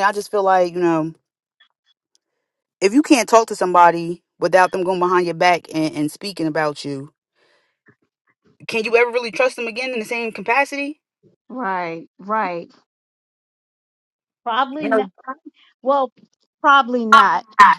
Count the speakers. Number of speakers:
2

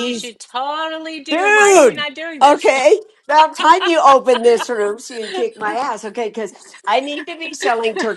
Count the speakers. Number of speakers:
2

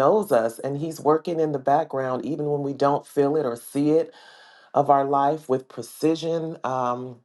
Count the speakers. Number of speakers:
1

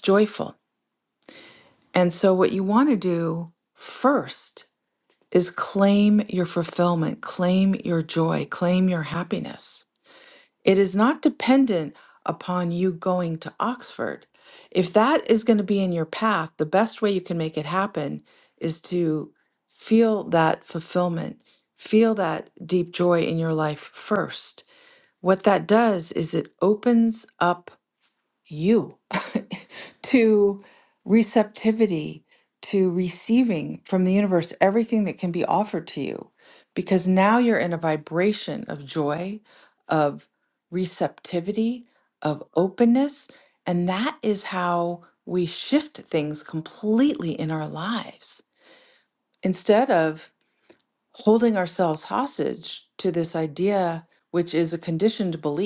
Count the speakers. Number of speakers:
1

